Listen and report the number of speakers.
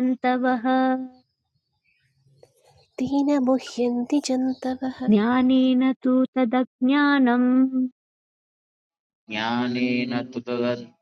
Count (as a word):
three